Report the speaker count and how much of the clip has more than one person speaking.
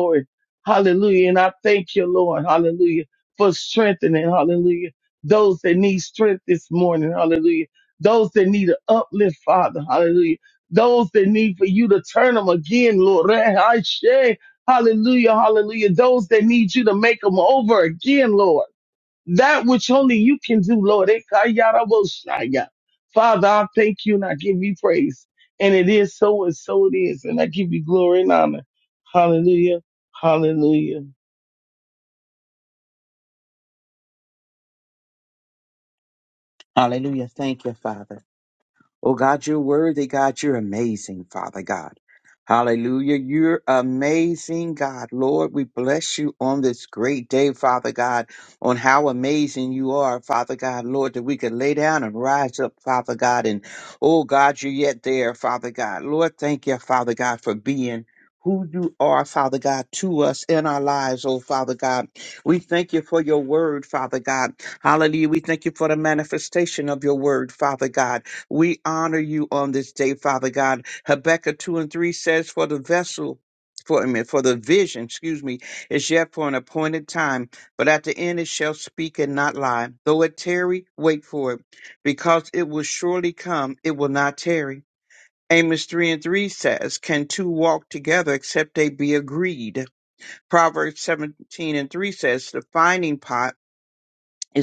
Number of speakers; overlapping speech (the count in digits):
2, no overlap